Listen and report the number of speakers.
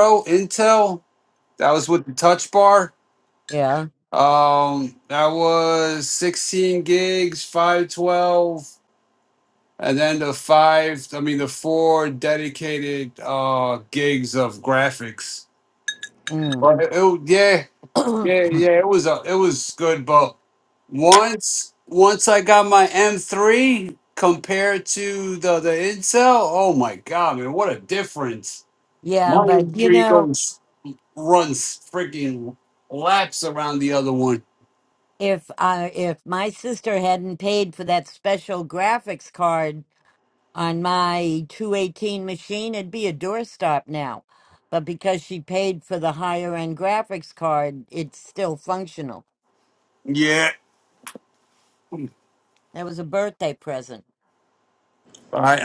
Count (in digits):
2